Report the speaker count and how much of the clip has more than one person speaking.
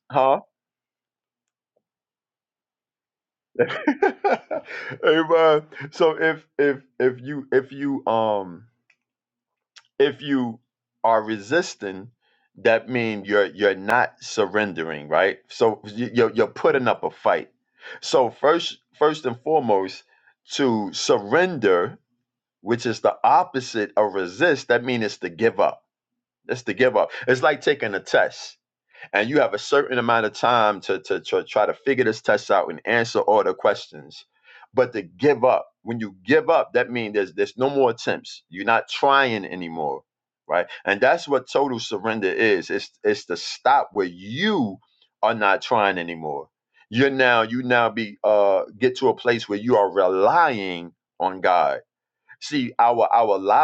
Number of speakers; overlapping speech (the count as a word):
one, no overlap